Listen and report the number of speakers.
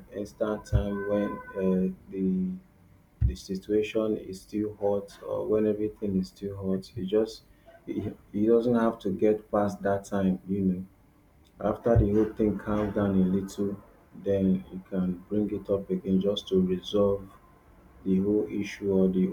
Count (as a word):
one